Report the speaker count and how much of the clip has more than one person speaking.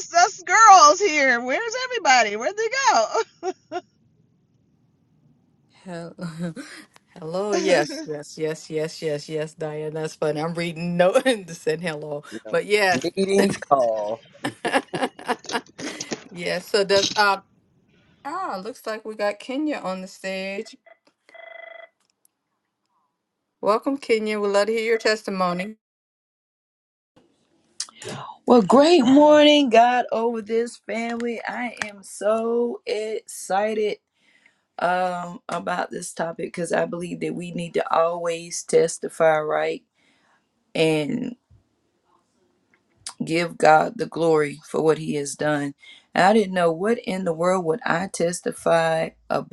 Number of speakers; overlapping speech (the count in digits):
4, about 1%